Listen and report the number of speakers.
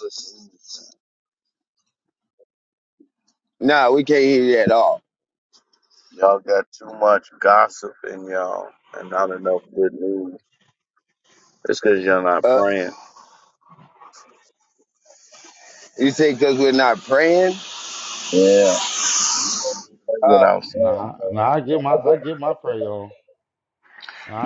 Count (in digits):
3